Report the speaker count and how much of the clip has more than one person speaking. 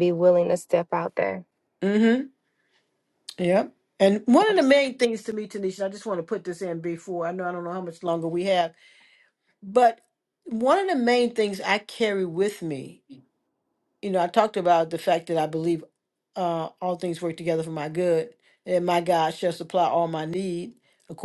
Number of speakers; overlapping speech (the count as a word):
two, under 1%